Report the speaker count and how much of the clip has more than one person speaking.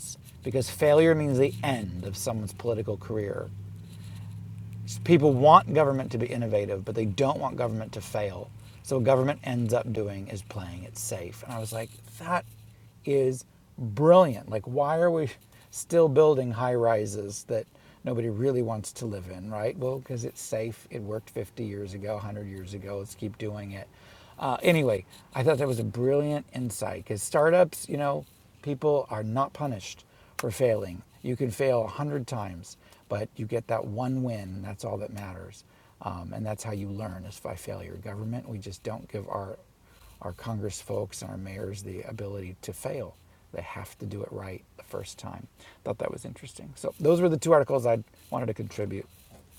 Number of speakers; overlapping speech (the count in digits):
1, no overlap